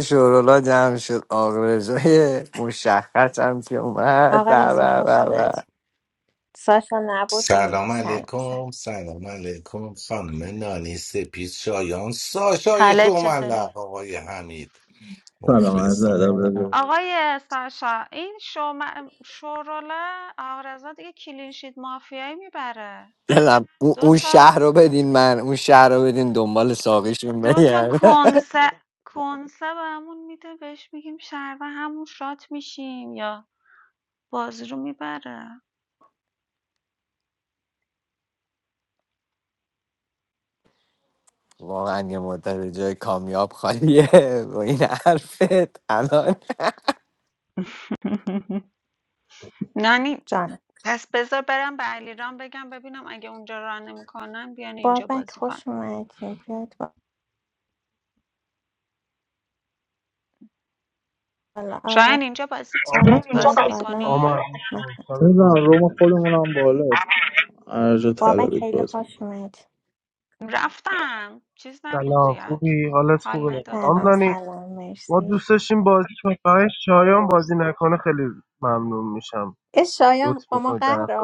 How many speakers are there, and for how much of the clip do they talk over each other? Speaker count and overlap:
six, about 16%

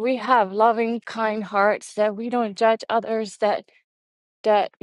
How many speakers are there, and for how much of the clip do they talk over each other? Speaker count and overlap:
one, no overlap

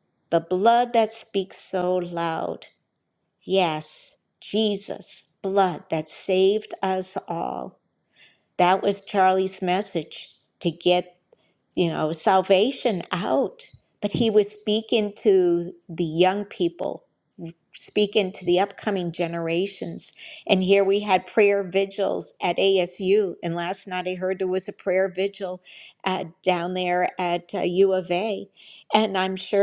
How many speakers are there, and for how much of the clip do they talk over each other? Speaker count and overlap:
one, no overlap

